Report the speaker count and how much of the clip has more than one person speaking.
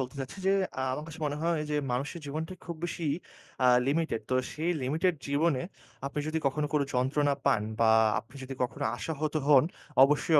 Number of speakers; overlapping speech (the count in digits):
1, no overlap